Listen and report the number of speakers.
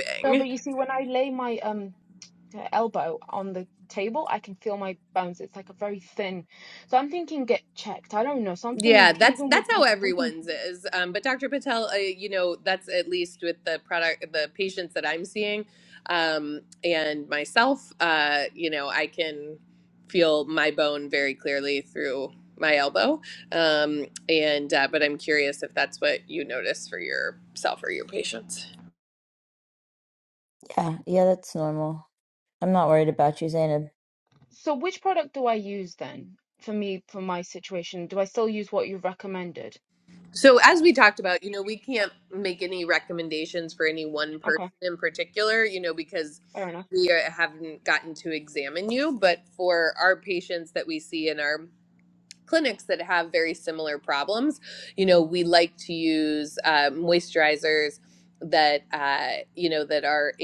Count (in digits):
3